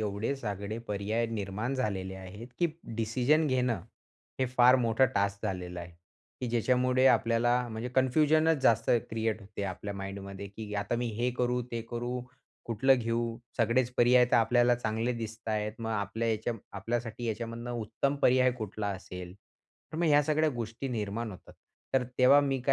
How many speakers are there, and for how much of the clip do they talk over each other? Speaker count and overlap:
one, no overlap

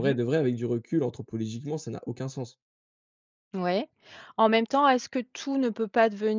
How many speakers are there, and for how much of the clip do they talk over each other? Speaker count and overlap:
two, about 4%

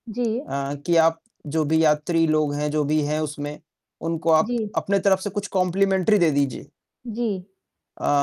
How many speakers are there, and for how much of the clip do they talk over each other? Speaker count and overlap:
two, about 4%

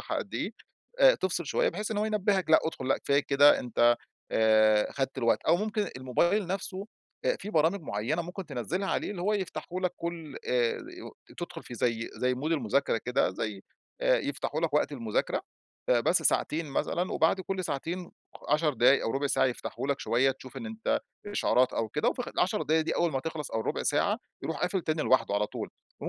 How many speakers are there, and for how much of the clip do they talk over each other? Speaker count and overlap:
one, no overlap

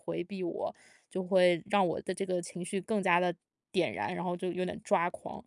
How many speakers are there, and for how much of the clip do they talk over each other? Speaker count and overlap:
one, no overlap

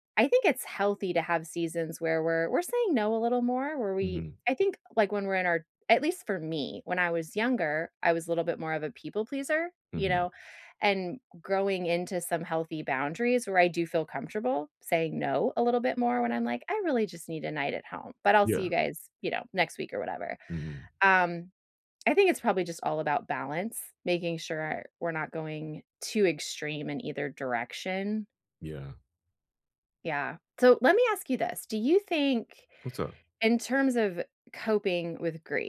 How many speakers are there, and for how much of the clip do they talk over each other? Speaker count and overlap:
two, about 2%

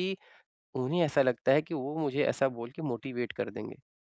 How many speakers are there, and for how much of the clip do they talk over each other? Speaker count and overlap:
one, no overlap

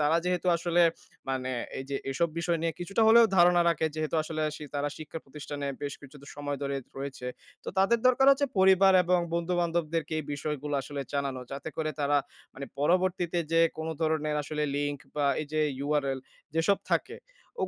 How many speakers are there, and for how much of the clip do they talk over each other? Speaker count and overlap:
one, no overlap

